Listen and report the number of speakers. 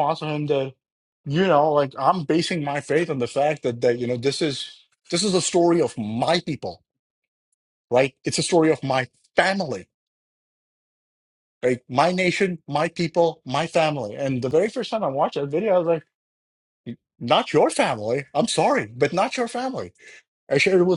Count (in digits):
1